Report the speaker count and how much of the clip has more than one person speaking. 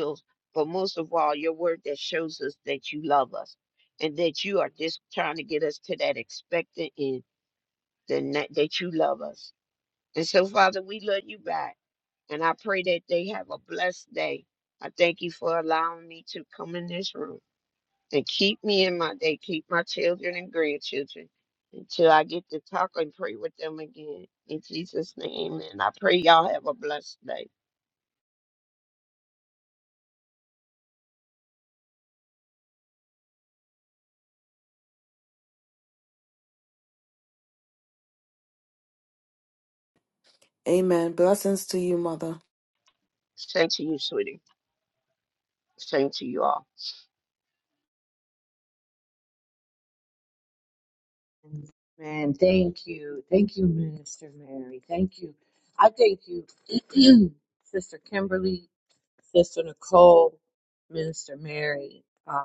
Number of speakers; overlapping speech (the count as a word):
three, no overlap